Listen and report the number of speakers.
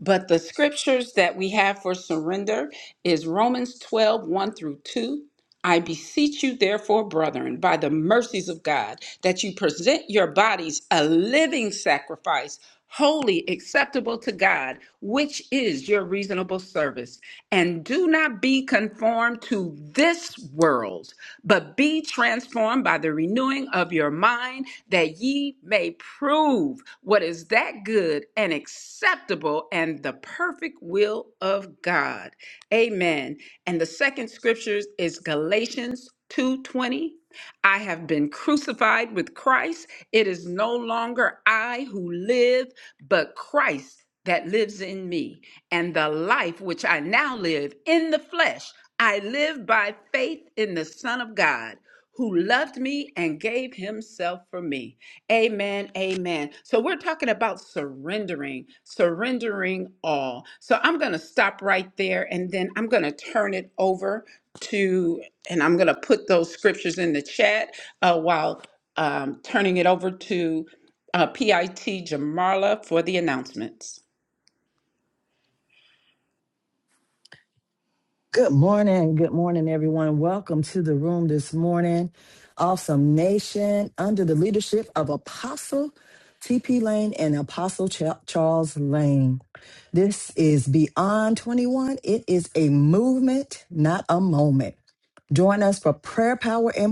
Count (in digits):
2